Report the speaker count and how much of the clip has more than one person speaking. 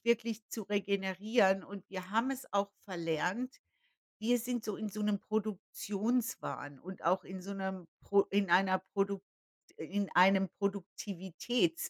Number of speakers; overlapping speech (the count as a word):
one, no overlap